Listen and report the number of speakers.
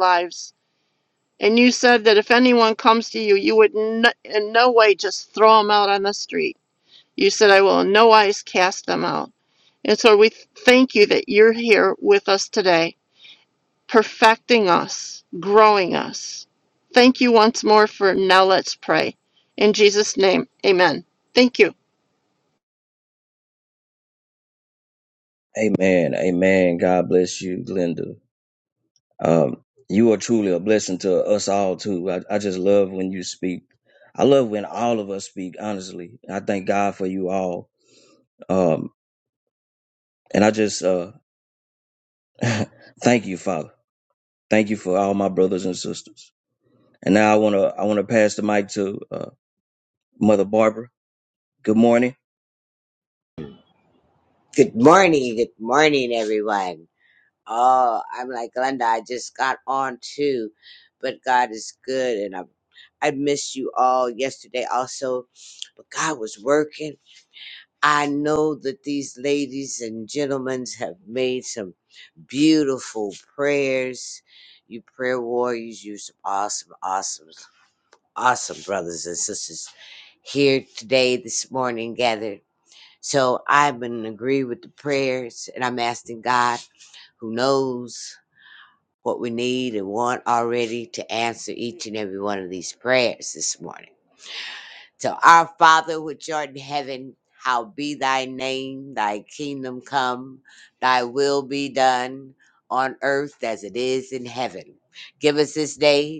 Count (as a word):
three